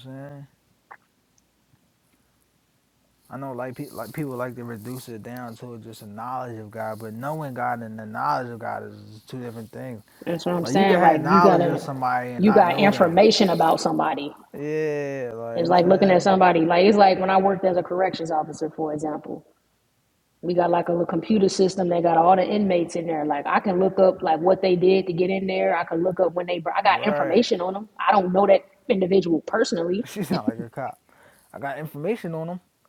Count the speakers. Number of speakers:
2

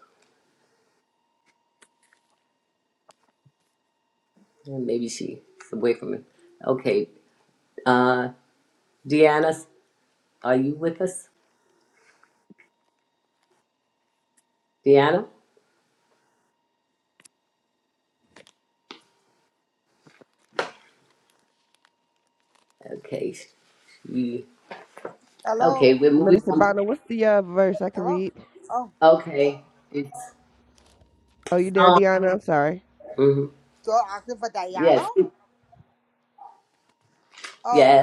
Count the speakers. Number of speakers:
3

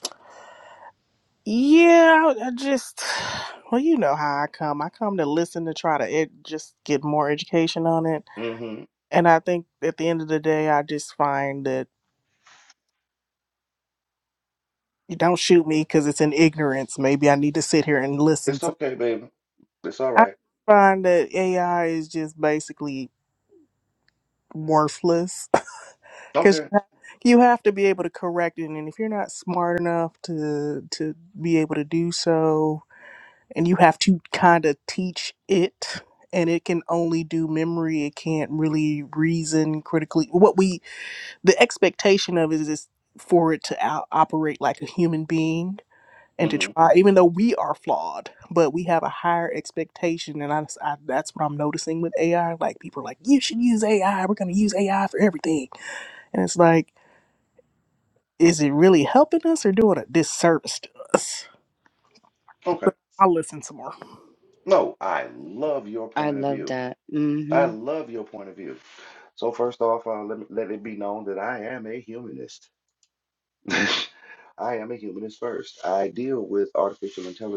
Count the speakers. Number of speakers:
3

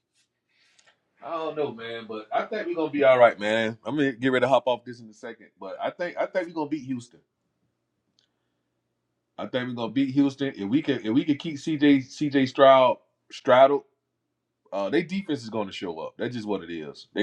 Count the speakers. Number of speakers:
1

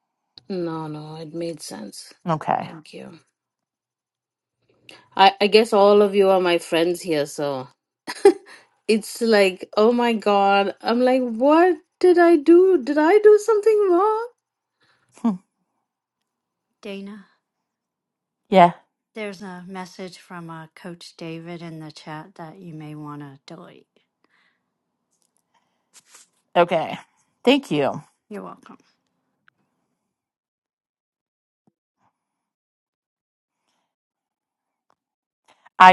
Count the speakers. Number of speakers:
3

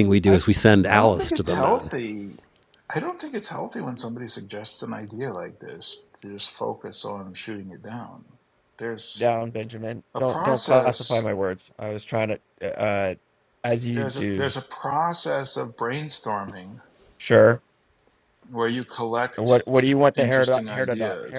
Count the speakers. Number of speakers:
3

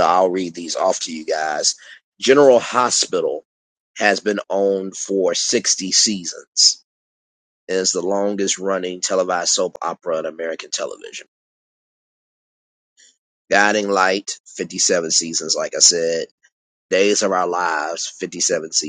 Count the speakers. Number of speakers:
1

